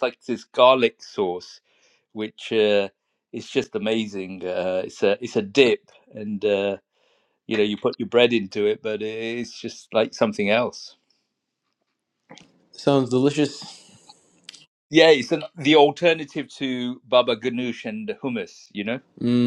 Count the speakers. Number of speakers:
2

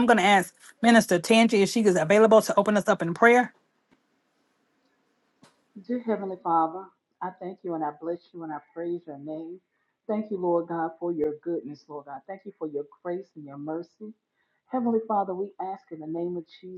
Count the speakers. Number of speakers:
2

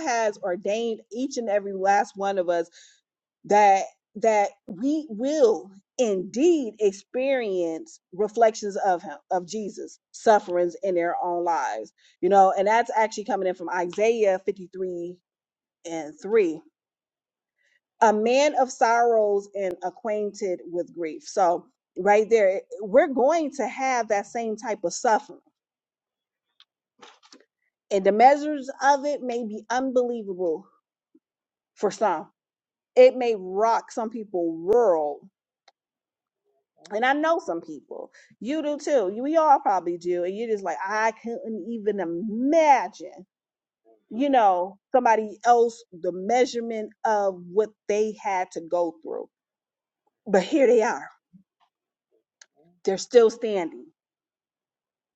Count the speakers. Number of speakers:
1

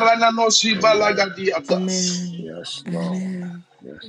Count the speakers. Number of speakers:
3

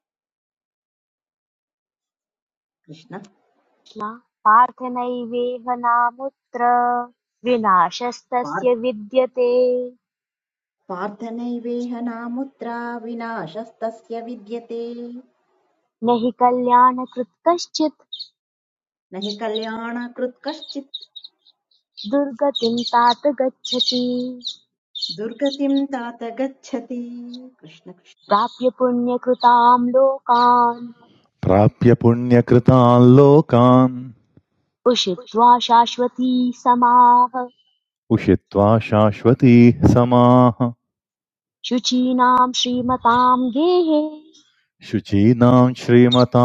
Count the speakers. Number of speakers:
3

